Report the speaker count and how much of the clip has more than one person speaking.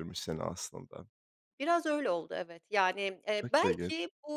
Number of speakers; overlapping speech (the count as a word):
two, about 12%